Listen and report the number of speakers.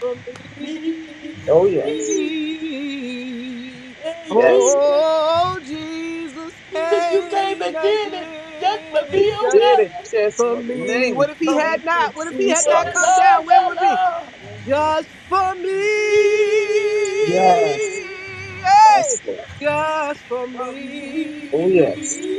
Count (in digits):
3